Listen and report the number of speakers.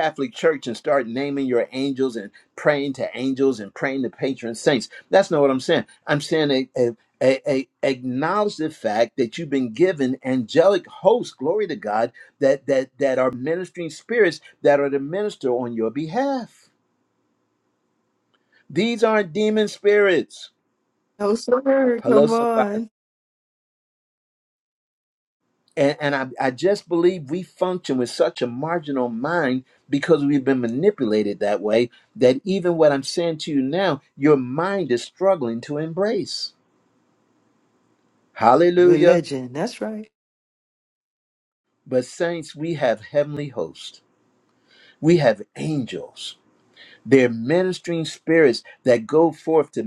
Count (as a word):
two